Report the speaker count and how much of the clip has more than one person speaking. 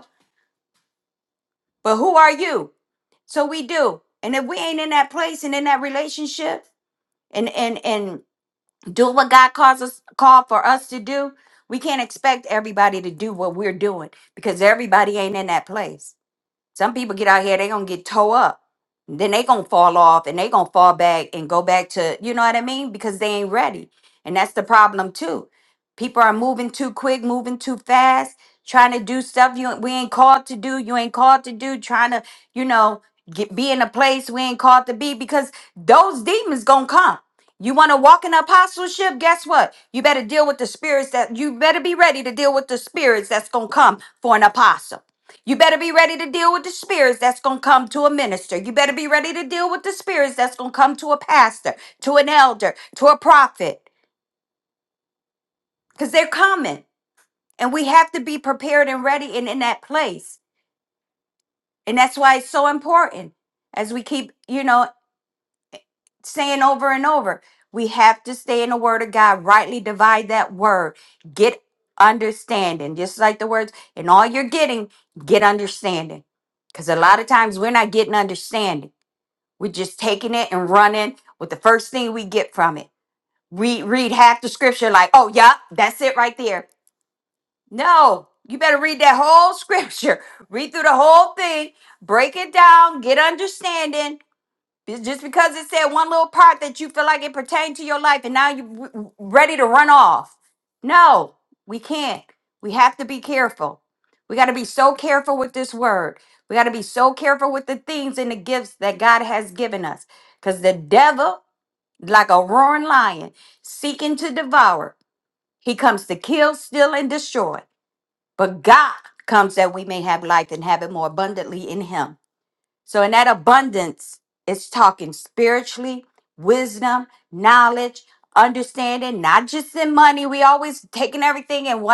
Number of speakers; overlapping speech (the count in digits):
1, no overlap